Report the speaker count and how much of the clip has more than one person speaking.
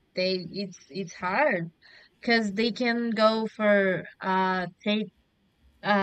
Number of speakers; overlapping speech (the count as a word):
one, no overlap